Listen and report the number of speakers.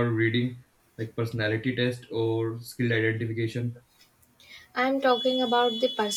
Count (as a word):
two